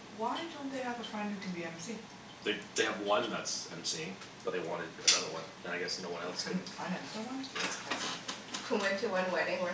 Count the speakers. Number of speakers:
3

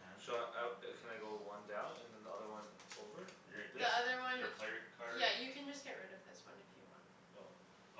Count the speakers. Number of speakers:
3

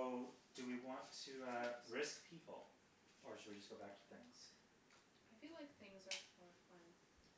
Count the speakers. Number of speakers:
2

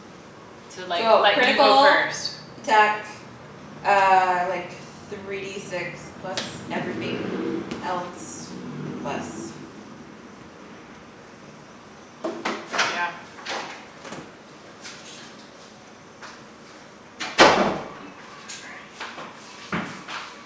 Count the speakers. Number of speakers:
2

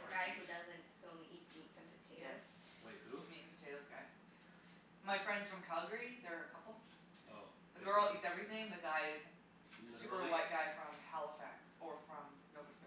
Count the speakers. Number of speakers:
3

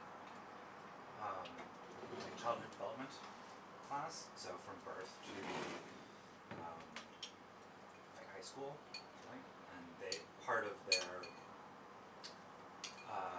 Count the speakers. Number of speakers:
1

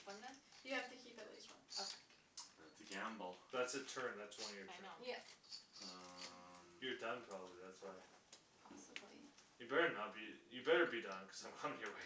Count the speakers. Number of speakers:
4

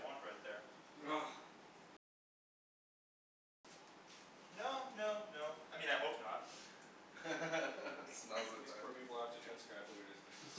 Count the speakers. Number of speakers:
3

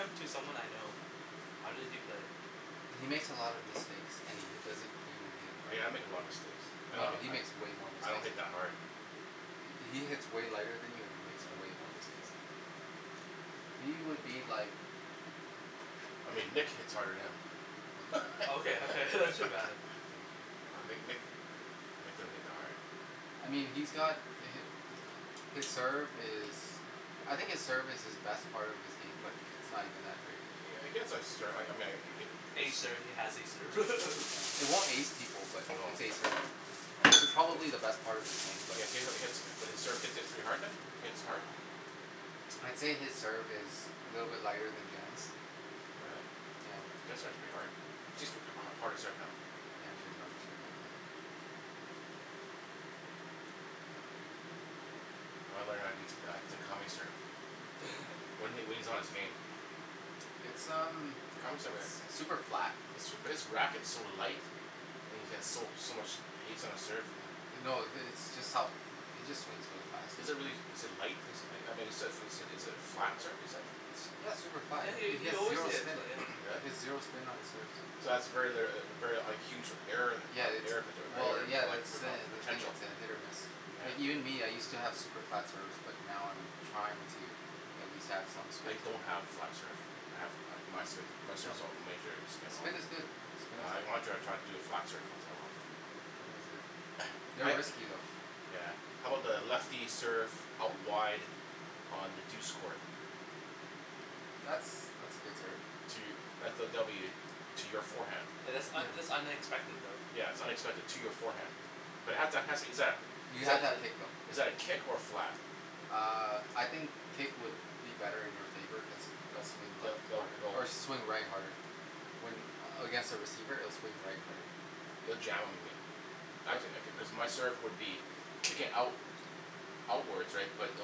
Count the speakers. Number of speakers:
3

